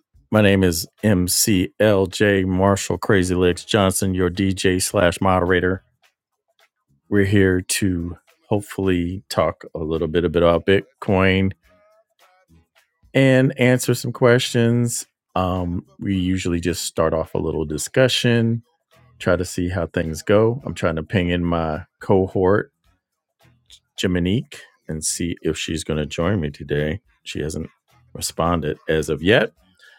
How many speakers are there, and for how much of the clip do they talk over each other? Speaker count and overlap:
1, no overlap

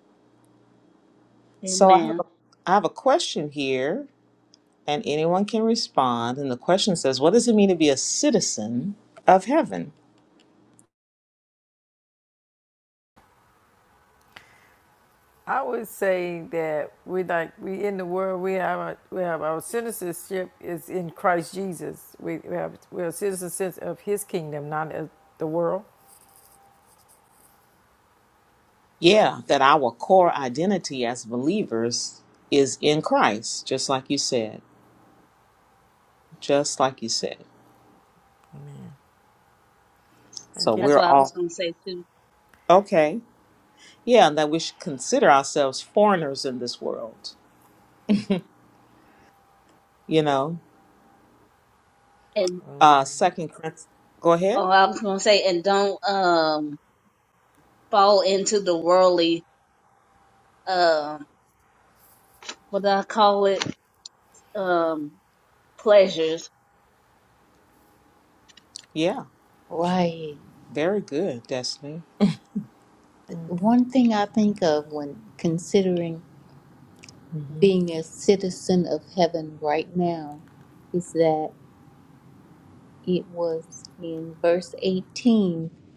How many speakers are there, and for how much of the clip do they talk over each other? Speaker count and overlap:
4, about 1%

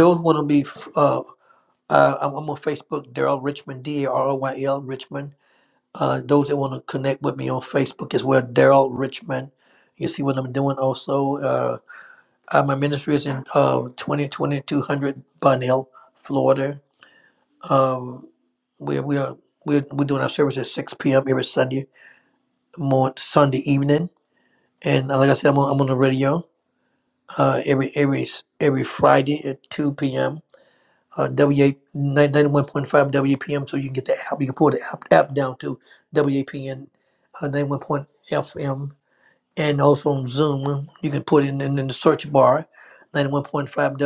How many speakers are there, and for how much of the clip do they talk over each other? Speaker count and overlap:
1, no overlap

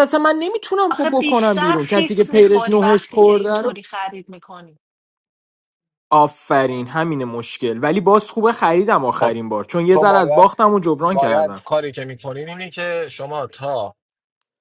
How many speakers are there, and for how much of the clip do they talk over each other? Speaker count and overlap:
3, about 27%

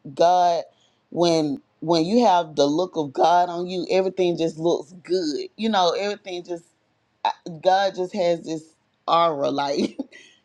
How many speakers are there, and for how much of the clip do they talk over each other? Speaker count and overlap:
1, no overlap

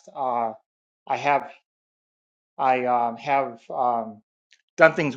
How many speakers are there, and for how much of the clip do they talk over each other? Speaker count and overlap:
1, no overlap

